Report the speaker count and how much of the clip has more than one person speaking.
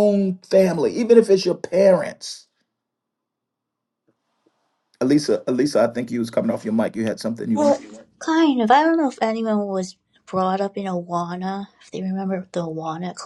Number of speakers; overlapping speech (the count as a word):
two, about 1%